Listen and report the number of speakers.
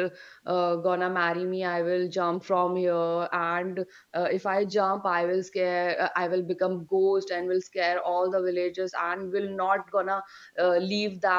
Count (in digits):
1